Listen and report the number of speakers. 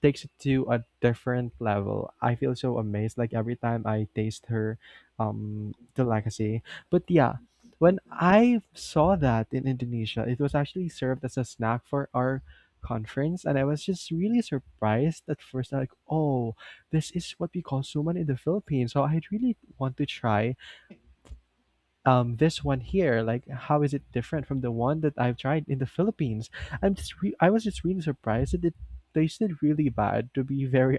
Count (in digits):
1